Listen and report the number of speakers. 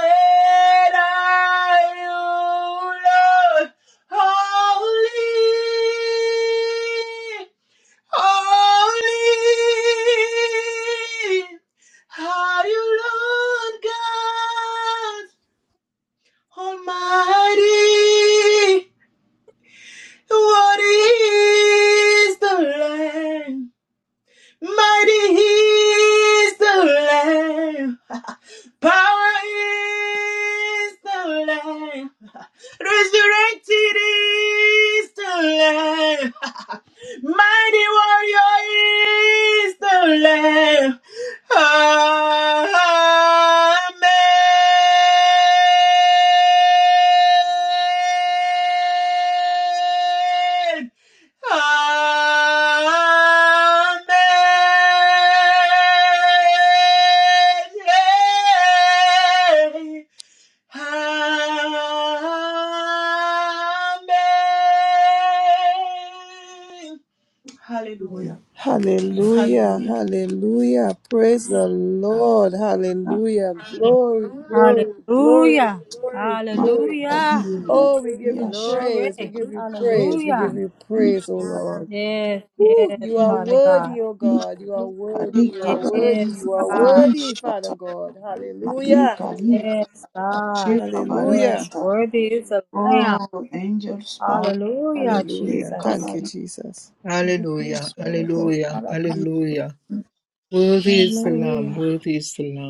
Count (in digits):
4